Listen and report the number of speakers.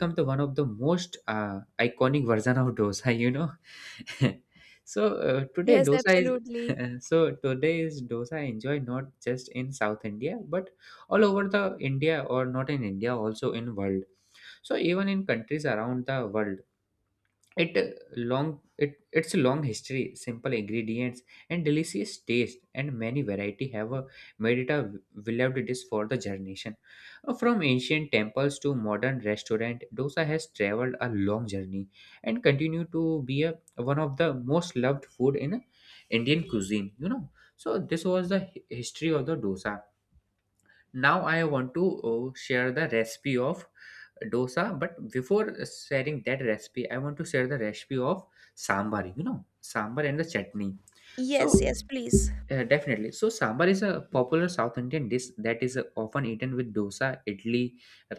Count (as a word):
two